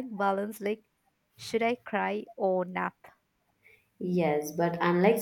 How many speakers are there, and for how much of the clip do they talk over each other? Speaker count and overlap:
two, no overlap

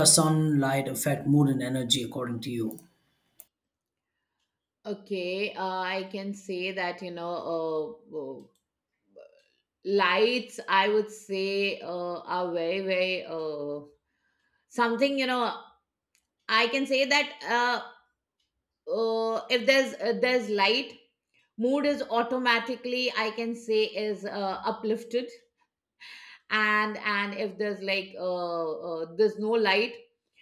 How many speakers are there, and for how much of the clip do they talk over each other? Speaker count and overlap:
two, no overlap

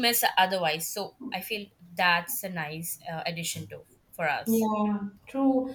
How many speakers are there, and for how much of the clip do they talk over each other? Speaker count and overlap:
two, no overlap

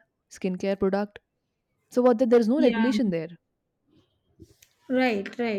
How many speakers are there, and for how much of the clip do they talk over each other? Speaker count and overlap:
two, about 6%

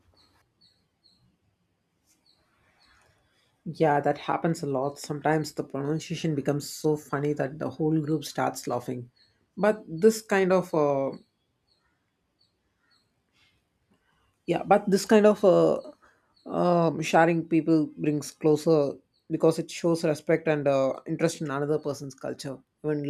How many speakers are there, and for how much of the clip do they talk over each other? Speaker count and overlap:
one, no overlap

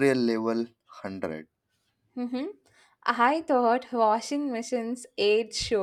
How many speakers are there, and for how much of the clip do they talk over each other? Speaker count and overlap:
two, no overlap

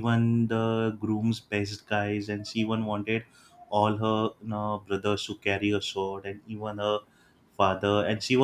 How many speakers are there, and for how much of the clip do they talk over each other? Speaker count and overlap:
one, no overlap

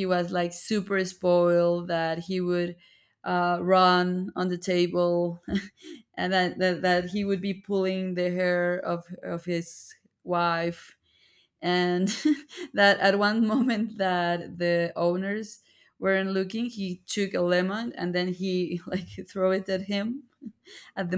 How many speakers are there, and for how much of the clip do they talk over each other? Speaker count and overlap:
one, no overlap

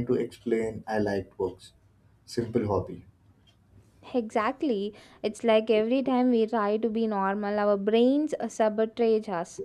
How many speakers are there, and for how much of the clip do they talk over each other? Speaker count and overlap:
two, no overlap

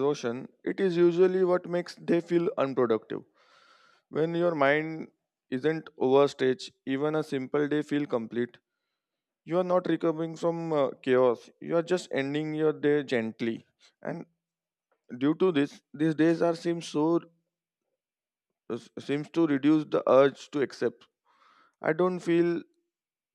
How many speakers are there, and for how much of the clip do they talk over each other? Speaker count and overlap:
one, no overlap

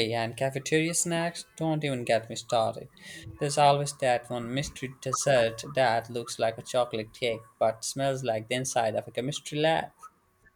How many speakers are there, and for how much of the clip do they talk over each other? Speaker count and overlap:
one, no overlap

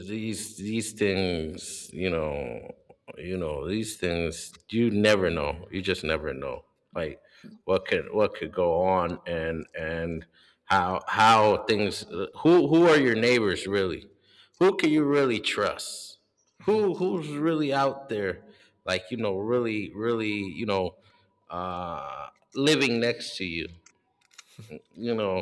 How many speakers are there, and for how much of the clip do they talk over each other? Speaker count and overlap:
one, no overlap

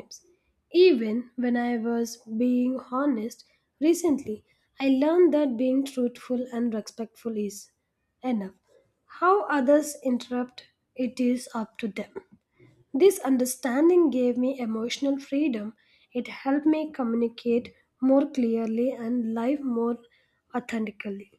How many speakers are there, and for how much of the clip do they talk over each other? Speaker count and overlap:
one, no overlap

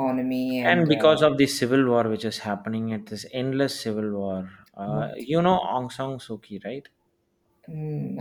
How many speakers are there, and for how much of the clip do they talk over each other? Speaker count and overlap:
two, about 14%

